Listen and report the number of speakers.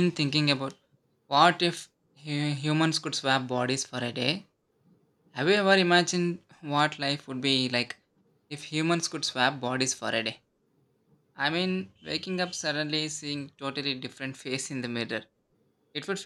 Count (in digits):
1